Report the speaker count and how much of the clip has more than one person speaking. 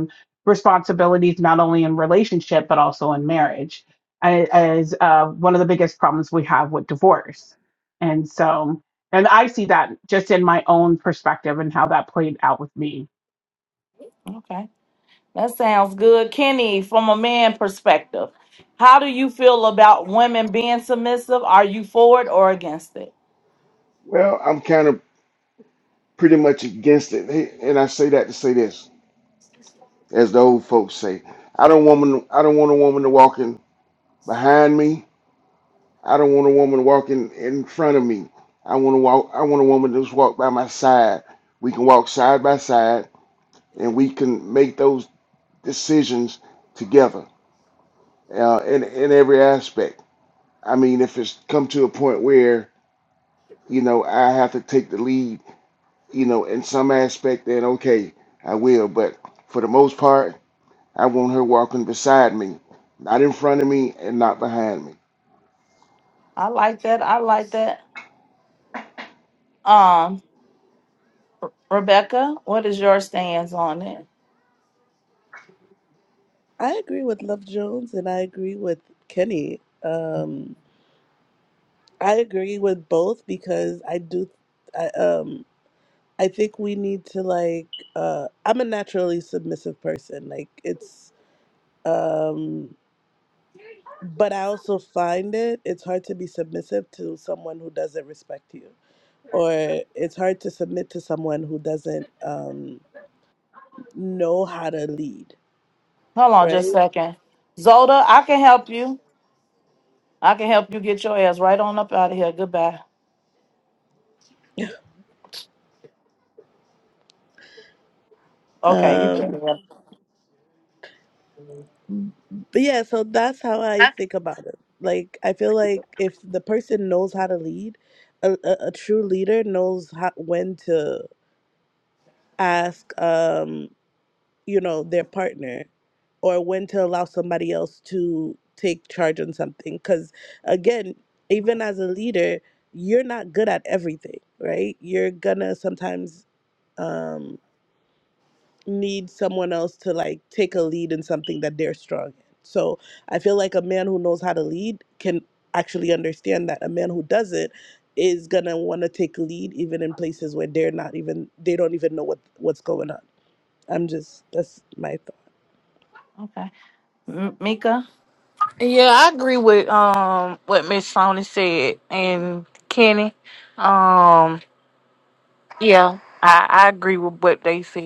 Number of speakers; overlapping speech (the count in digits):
5, about 1%